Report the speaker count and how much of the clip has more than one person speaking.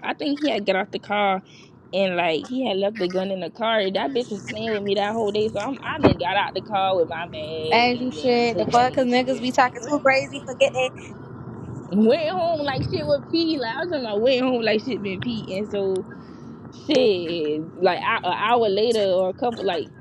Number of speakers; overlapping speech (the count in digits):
2, about 9%